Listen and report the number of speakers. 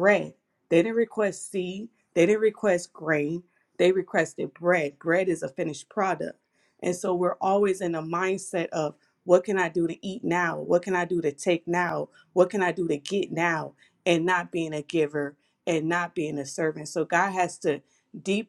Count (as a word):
one